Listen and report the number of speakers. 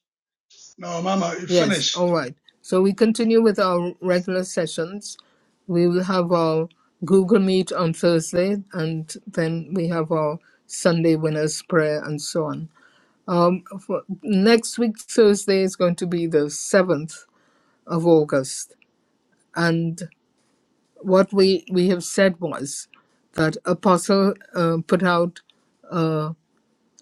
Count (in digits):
2